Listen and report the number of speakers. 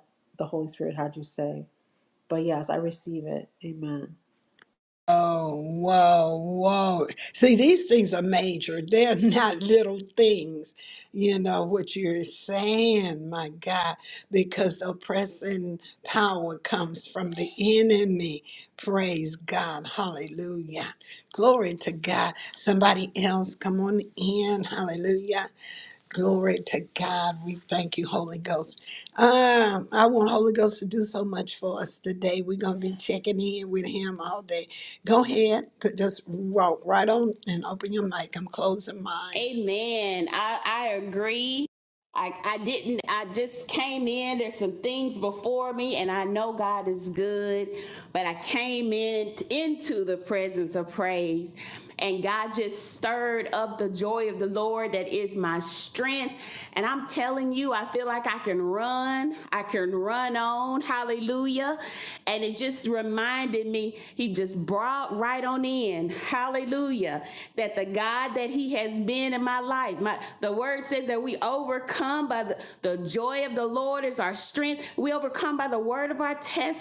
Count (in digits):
3